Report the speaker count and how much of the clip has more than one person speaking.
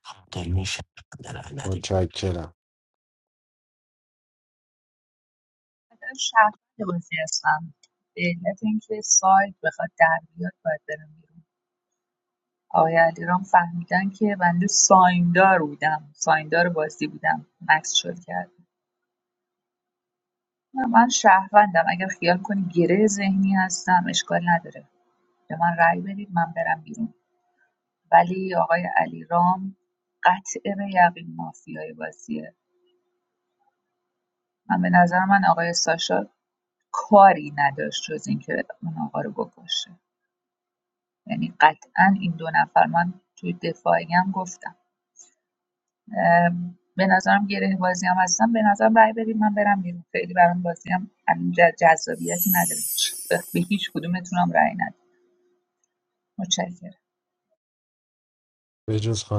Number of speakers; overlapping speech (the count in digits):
3, under 1%